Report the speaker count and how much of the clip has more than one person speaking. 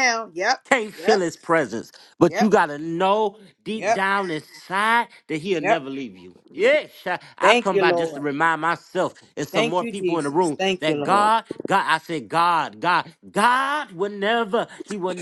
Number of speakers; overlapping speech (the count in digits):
2, about 22%